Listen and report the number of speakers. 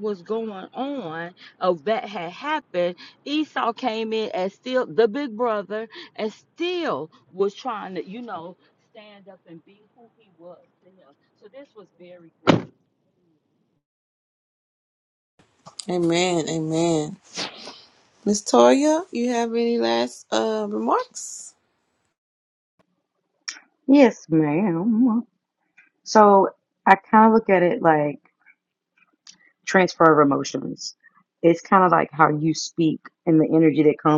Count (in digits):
3